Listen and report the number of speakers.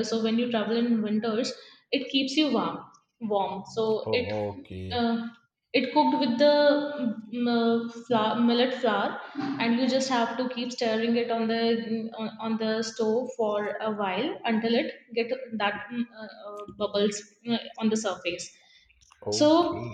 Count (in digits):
2